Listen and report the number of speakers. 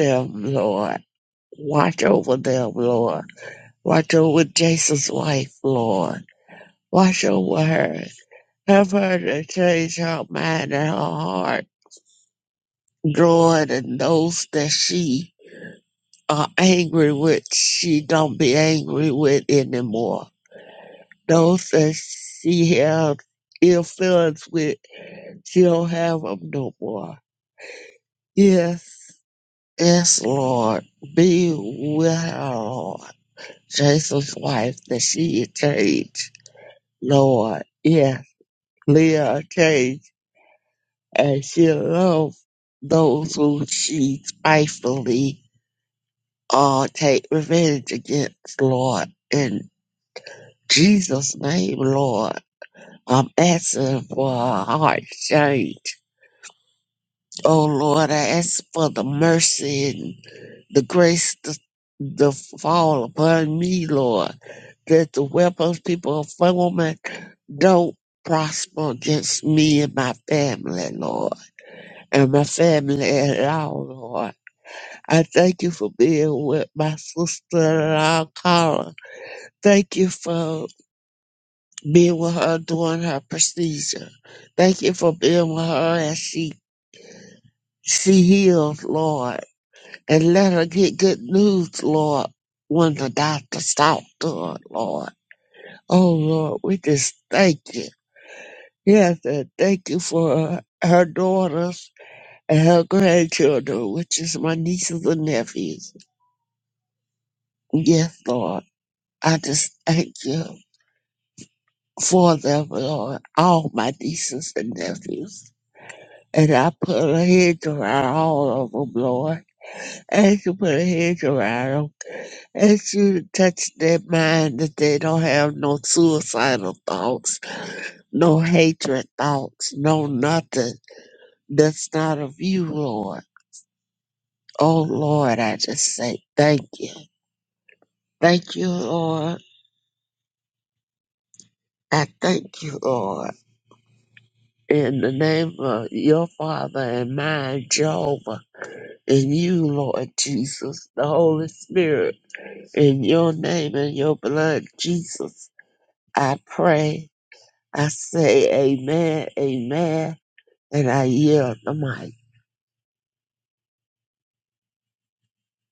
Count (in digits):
1